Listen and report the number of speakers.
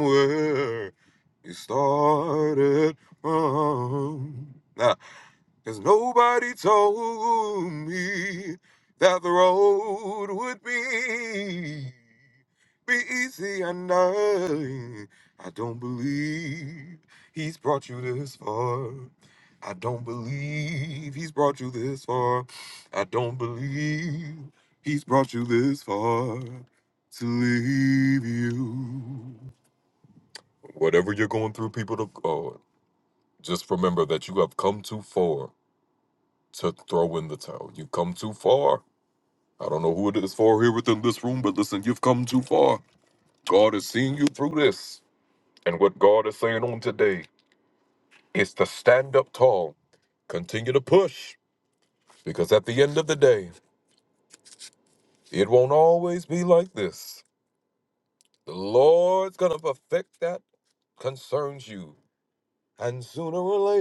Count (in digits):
1